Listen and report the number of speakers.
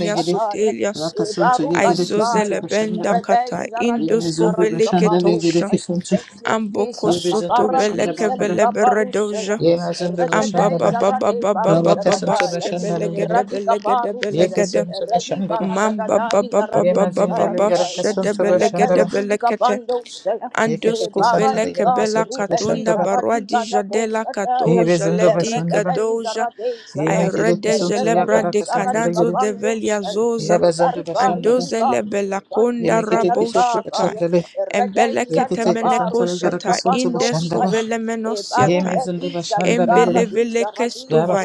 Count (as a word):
three